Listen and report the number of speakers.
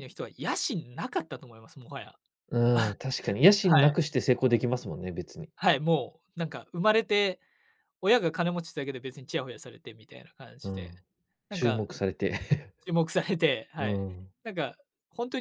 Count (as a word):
two